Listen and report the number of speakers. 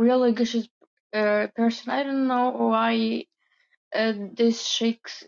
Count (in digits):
1